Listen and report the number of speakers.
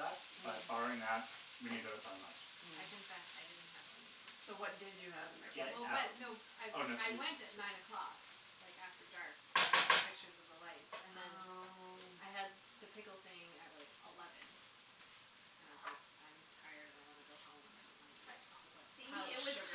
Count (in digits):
3